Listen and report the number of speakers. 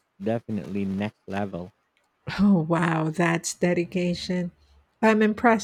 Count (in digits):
2